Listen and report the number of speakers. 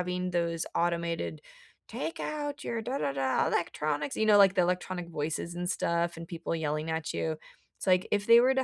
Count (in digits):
1